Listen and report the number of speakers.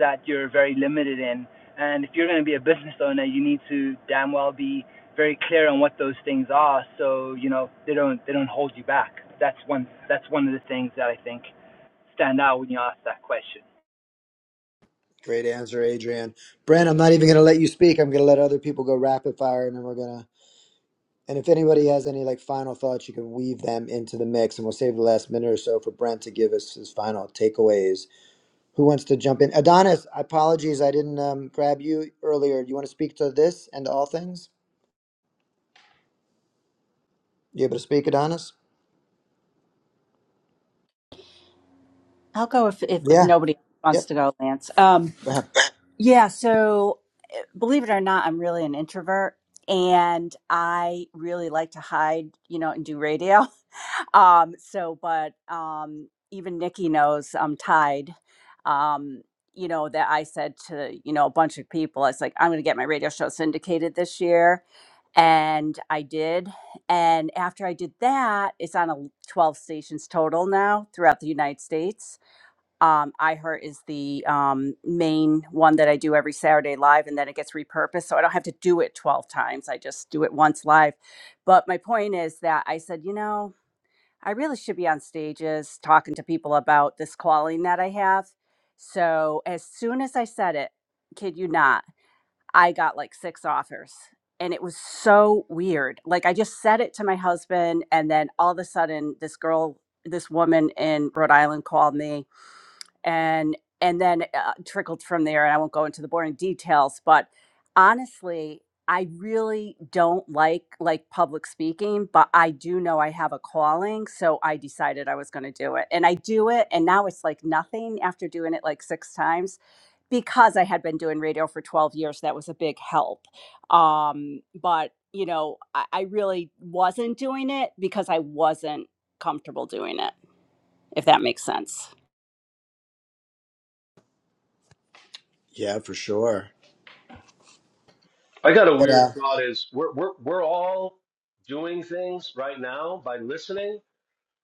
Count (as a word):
four